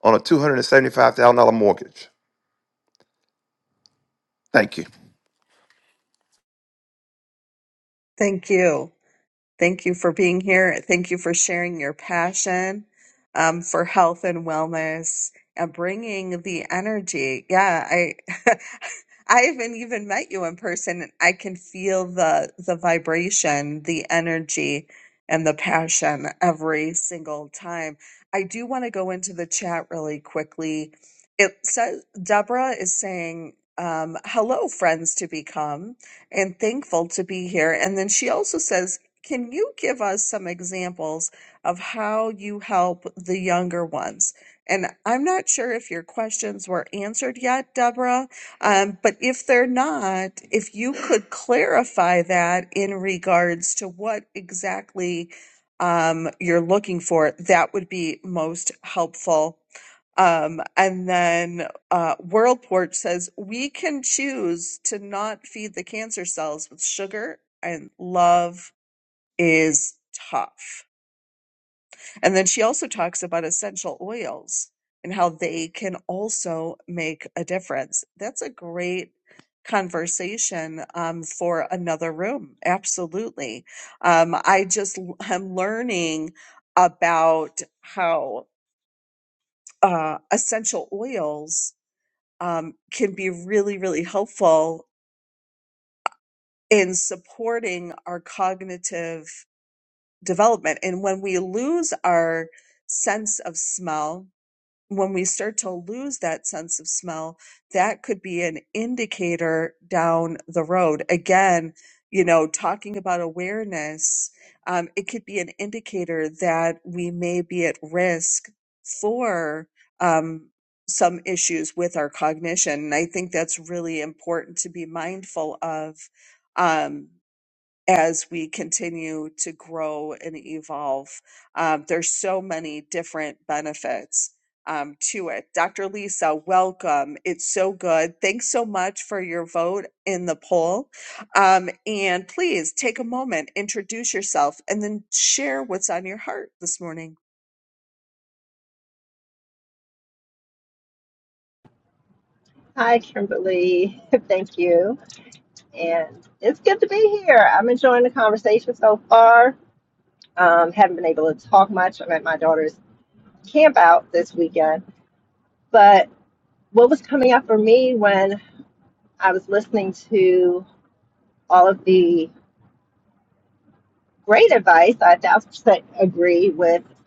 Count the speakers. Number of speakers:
3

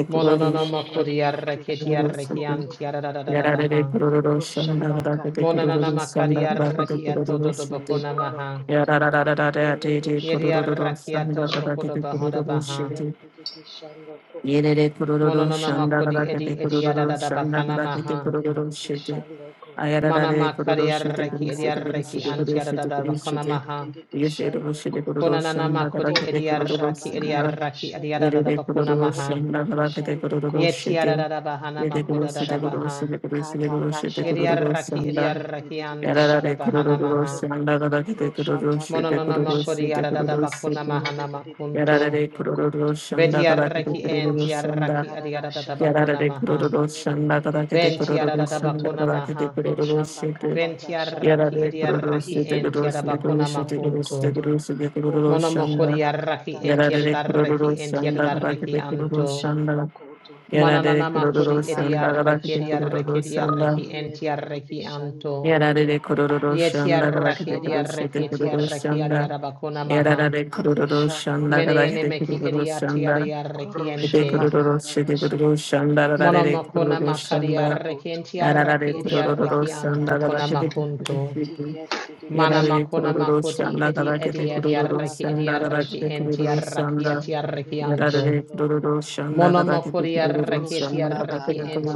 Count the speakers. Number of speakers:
3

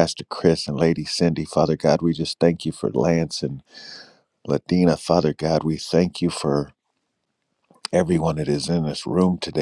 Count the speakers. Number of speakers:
1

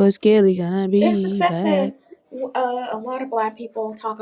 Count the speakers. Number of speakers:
2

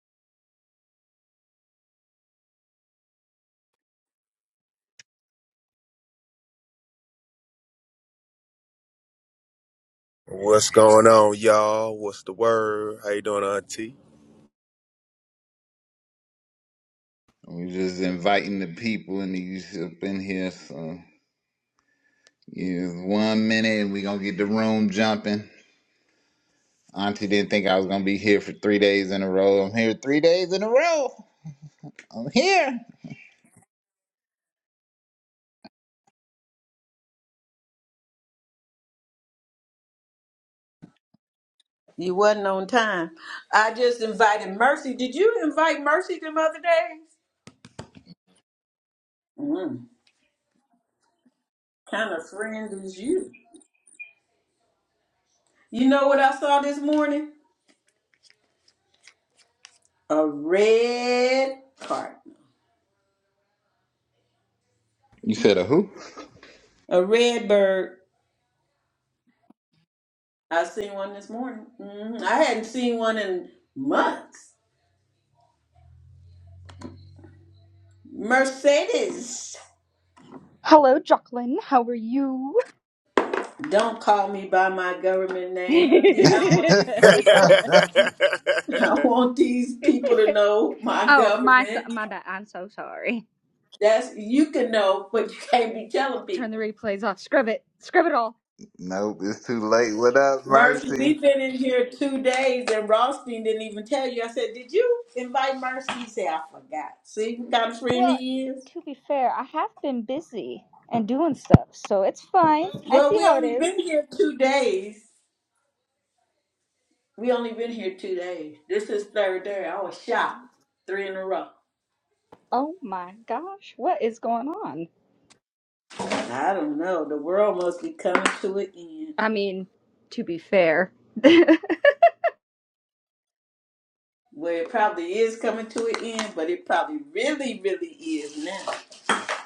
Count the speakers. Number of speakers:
4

